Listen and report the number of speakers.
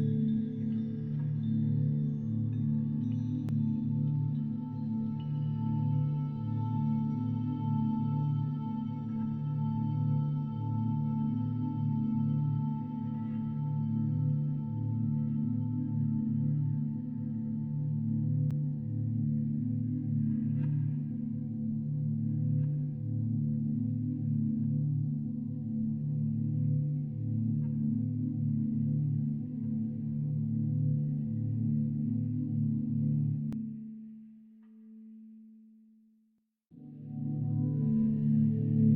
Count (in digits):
0